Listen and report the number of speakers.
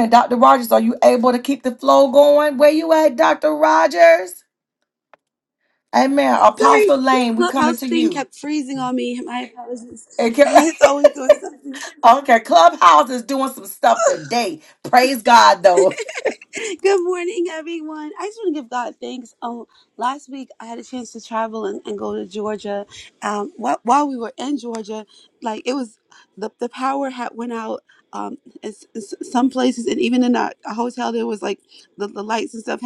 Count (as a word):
two